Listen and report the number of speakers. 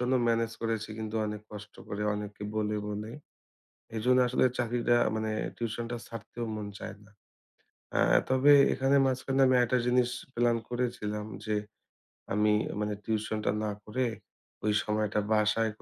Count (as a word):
one